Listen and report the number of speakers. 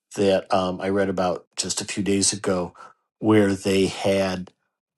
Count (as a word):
one